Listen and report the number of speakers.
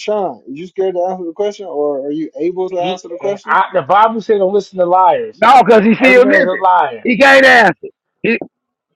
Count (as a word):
three